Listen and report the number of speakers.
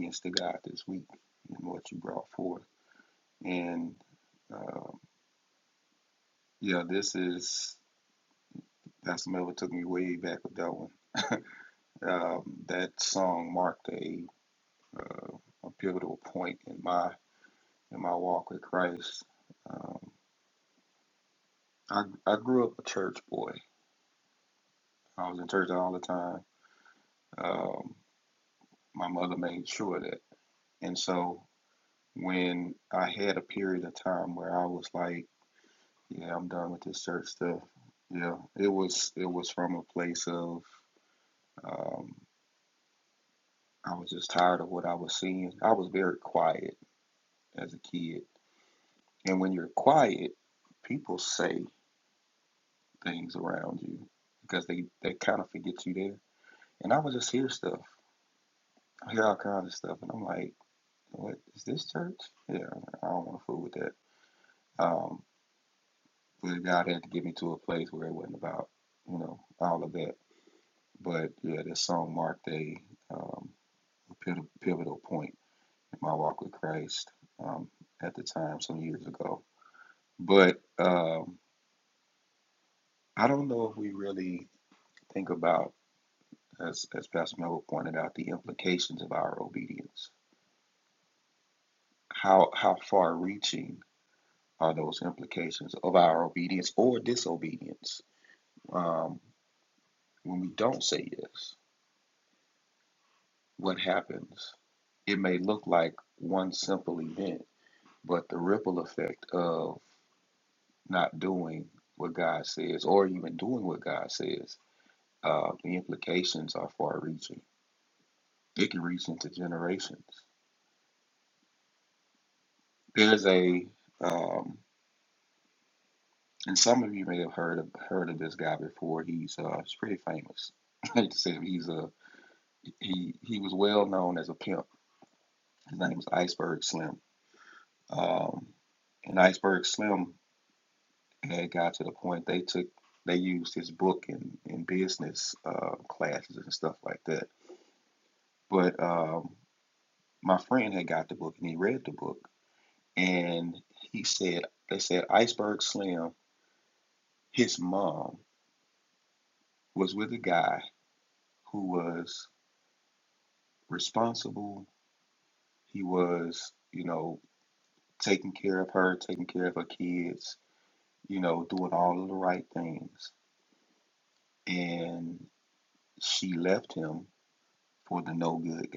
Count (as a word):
one